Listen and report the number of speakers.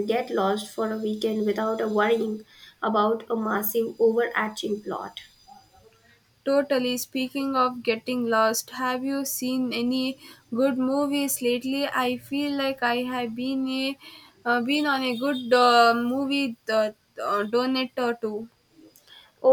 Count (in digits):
2